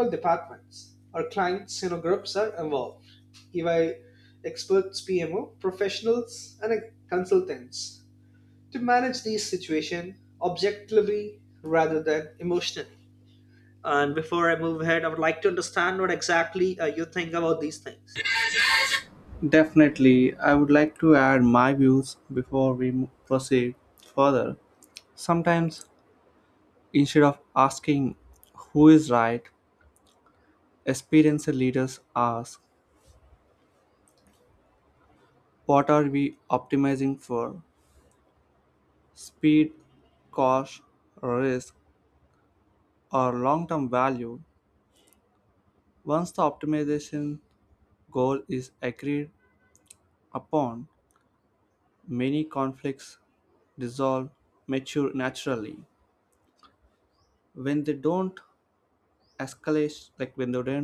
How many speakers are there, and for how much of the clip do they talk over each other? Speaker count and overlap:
2, no overlap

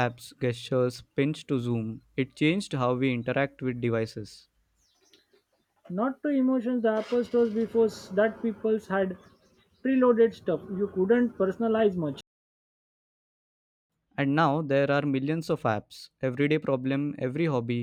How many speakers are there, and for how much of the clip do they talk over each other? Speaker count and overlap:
2, no overlap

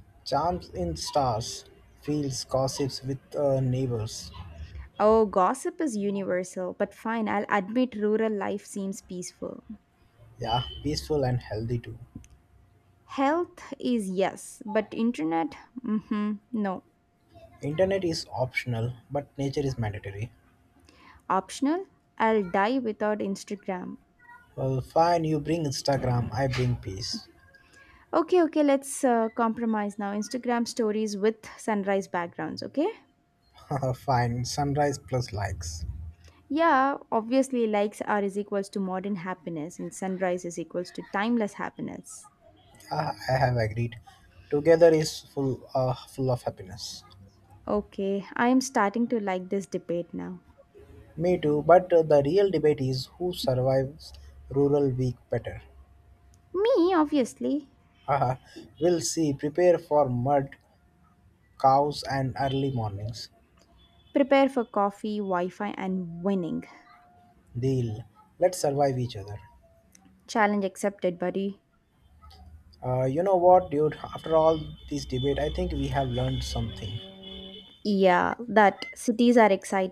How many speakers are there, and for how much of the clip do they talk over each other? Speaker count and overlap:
2, no overlap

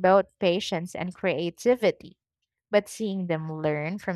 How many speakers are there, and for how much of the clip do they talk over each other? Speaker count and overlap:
1, no overlap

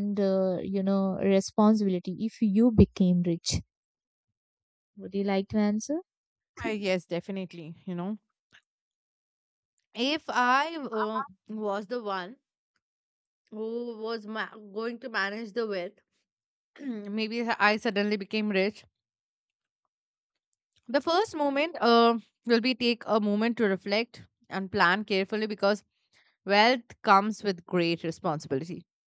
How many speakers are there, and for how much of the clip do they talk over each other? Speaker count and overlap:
2, no overlap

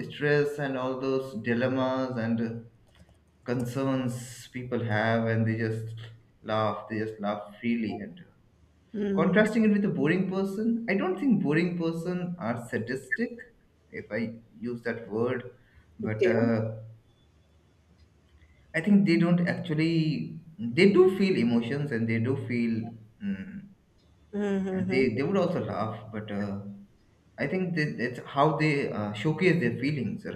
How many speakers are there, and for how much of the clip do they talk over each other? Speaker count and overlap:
2, about 4%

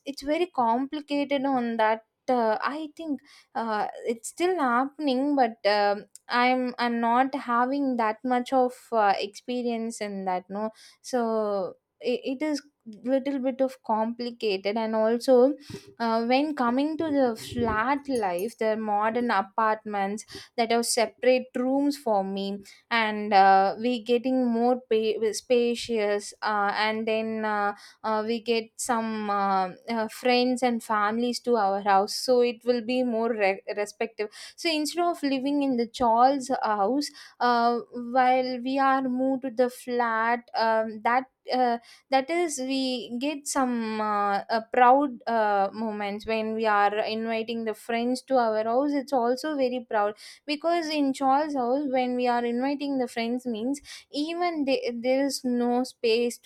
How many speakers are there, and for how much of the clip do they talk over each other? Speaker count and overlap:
1, no overlap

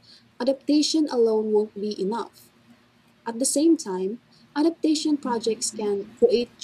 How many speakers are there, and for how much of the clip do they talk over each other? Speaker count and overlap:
1, no overlap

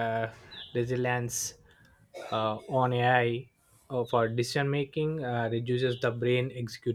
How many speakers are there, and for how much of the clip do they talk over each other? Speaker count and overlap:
1, no overlap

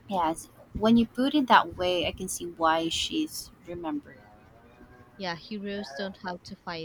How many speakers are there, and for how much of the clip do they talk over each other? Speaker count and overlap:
2, no overlap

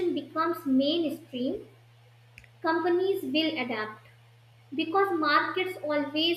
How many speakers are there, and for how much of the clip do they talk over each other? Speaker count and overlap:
1, no overlap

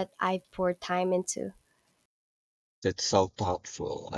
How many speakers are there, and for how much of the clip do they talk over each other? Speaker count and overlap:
2, no overlap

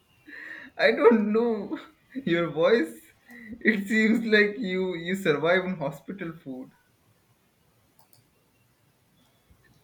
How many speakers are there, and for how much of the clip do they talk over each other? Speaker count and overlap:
1, no overlap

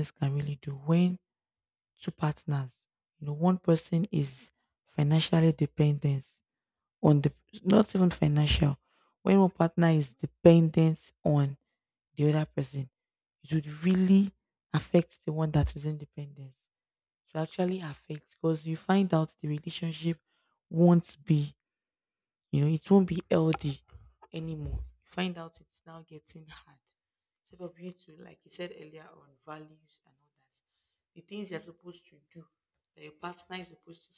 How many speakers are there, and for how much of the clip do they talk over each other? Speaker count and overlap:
1, no overlap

